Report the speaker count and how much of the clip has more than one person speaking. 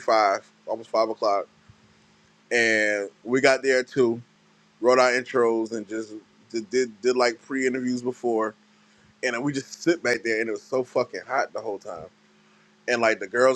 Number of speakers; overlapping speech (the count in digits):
1, no overlap